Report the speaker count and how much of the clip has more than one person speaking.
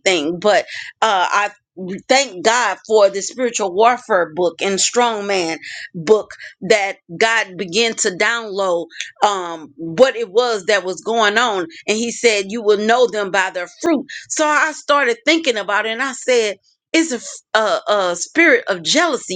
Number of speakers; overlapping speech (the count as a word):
one, no overlap